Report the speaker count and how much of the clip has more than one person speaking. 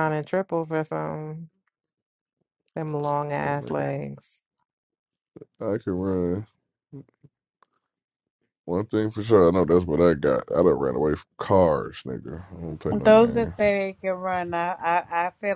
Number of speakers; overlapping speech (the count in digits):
3, about 4%